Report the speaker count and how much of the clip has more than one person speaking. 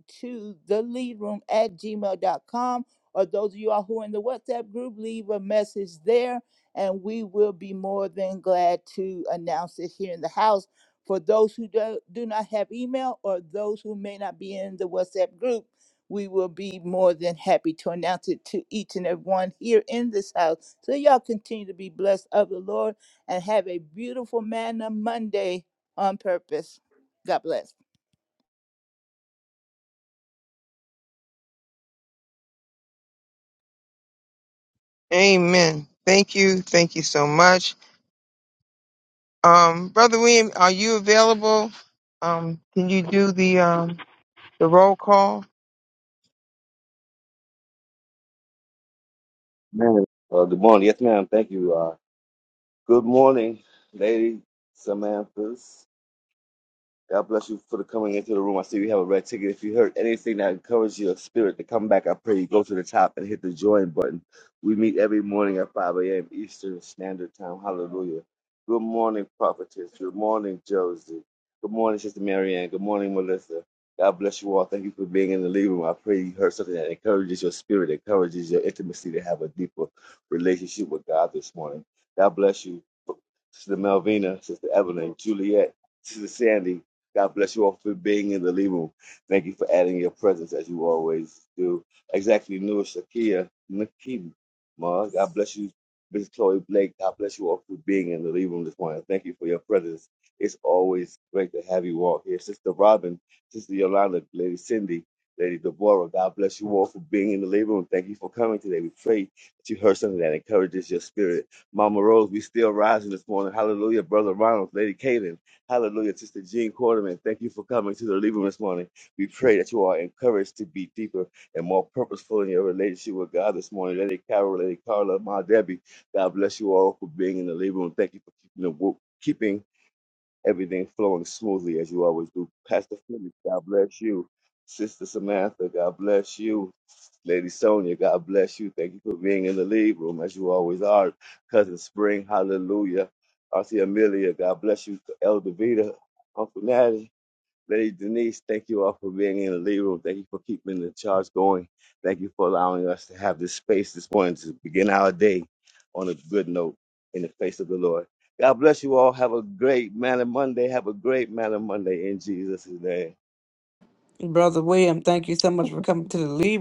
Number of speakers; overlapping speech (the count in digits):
4, no overlap